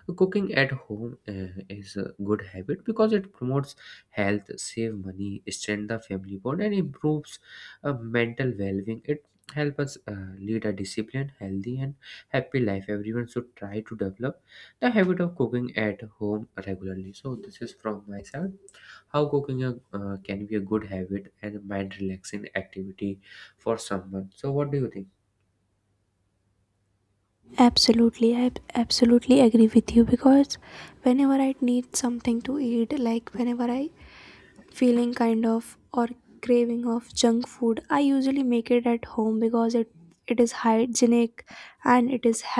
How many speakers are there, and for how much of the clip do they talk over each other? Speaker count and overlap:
2, no overlap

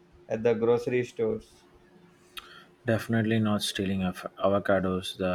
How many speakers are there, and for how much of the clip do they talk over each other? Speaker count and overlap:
2, no overlap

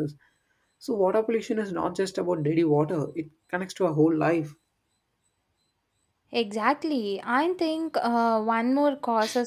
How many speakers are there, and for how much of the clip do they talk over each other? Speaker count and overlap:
2, no overlap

